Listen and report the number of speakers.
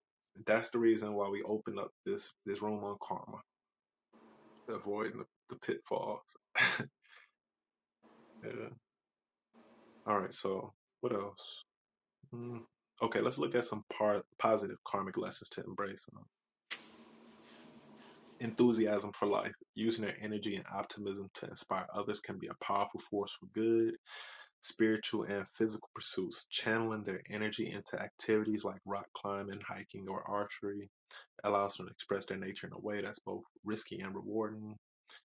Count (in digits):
1